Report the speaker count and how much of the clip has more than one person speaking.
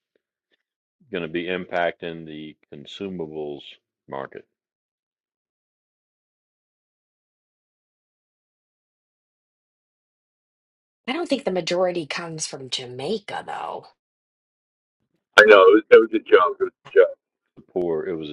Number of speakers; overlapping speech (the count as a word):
three, no overlap